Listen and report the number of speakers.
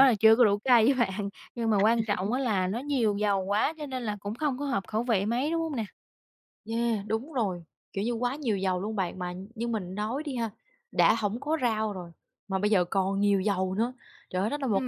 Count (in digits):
2